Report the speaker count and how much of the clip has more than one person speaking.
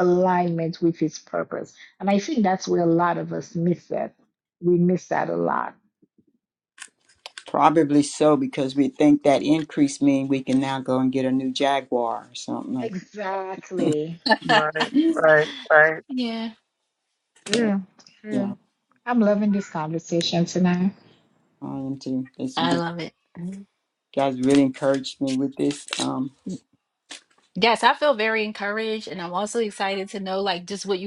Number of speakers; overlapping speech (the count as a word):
four, about 3%